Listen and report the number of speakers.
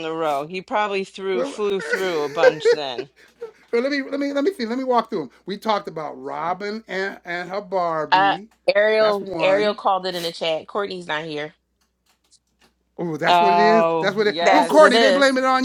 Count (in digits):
3